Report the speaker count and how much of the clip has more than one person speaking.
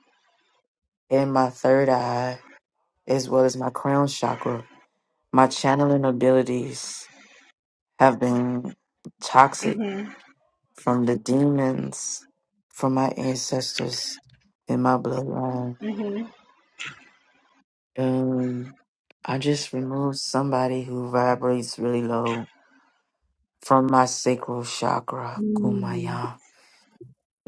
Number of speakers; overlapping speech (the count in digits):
1, no overlap